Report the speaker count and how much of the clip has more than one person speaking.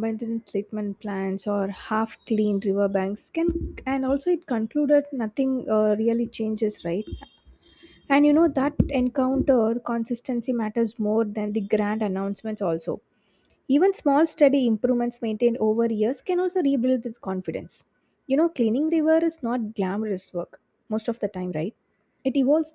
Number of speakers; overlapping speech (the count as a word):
one, no overlap